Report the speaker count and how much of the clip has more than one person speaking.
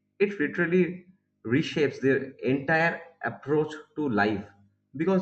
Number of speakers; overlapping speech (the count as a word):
one, no overlap